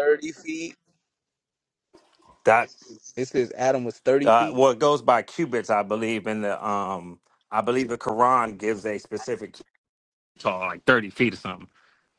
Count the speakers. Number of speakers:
2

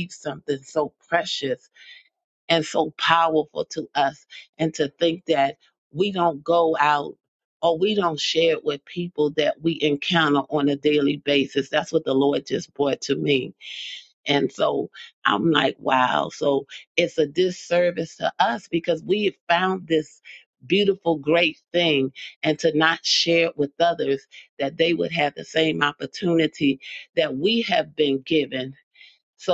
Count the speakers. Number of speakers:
1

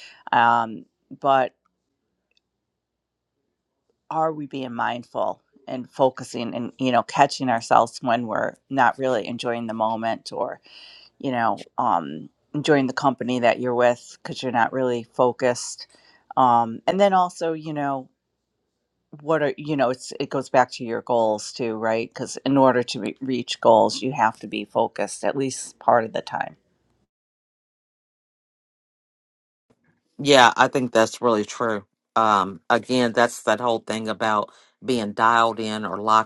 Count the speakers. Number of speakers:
2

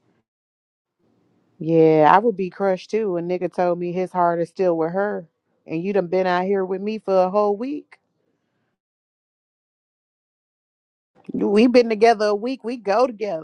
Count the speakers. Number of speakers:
1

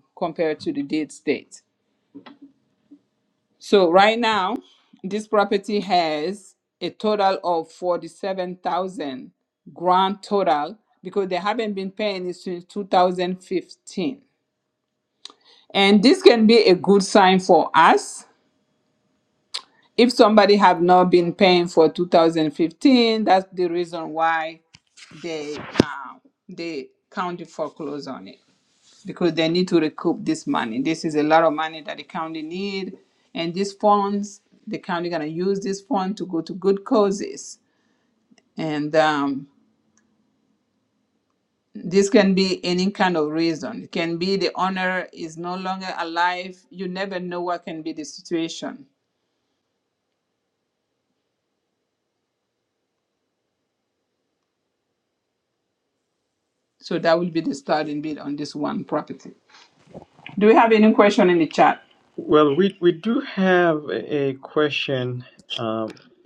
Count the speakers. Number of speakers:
2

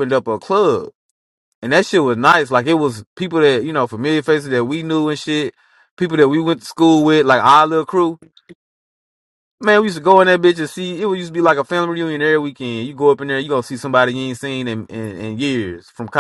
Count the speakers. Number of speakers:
1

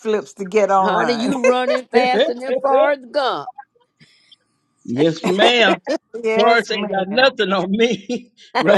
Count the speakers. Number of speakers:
3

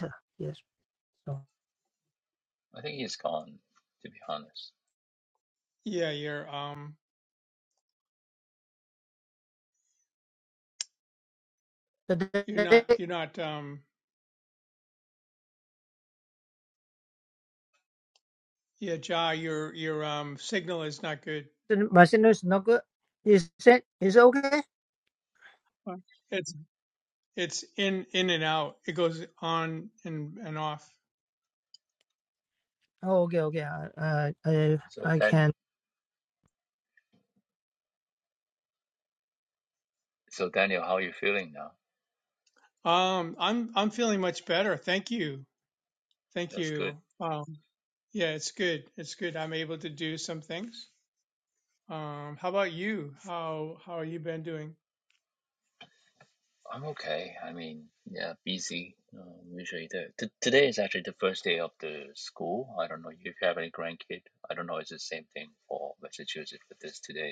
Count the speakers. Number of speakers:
3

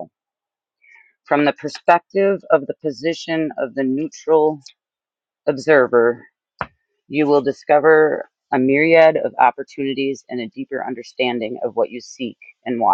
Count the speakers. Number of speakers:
1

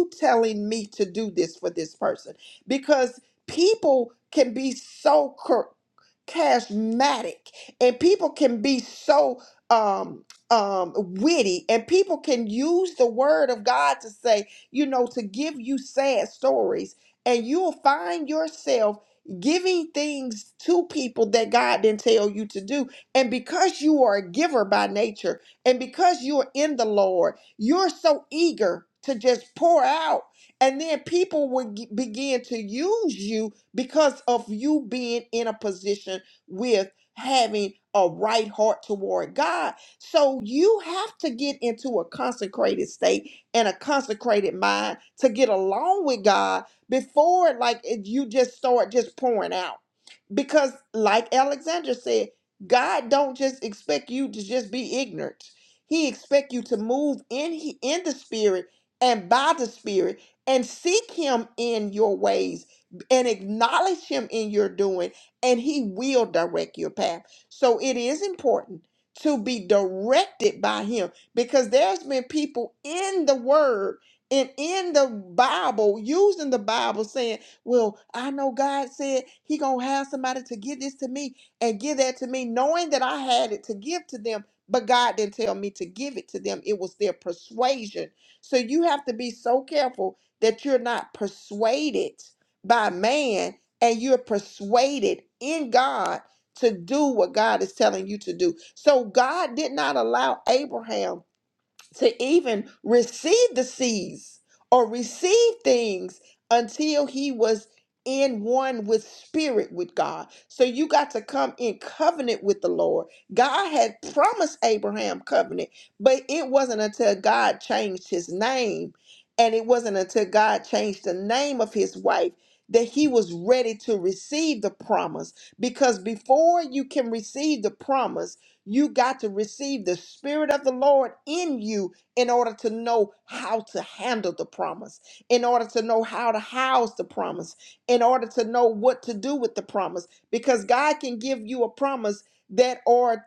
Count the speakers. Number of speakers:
1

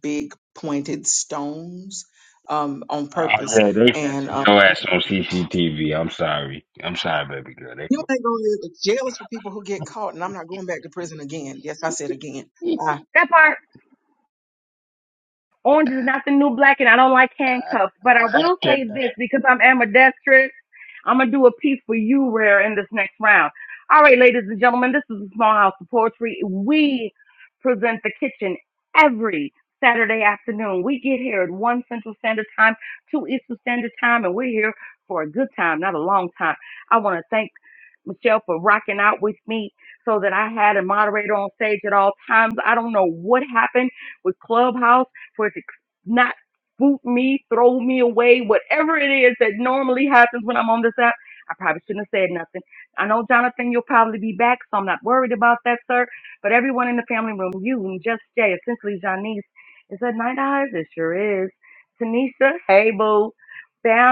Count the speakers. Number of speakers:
3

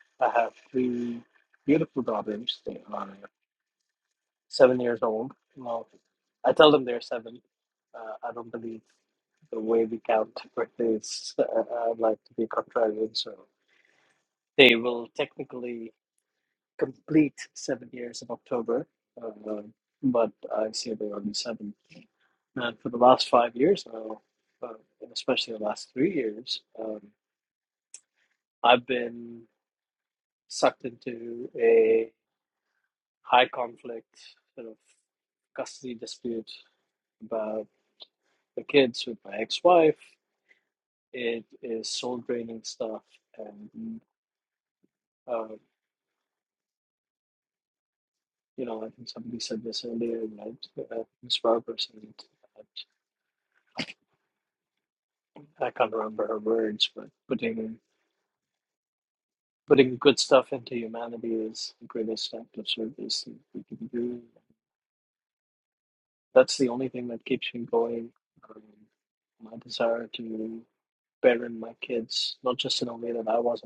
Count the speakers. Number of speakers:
1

